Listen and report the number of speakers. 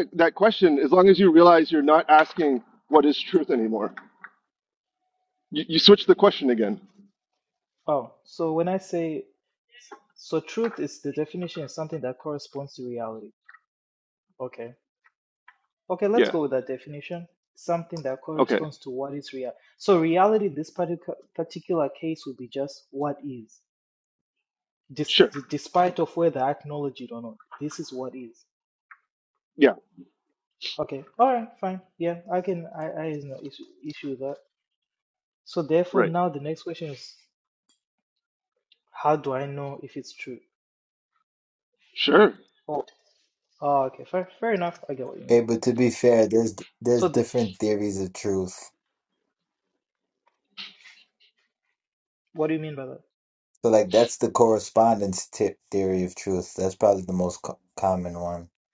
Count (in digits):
3